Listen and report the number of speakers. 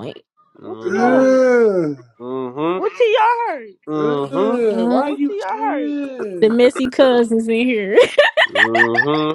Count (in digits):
4